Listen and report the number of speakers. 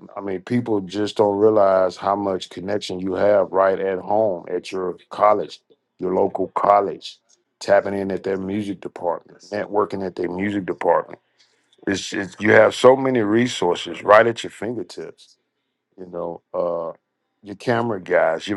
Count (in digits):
1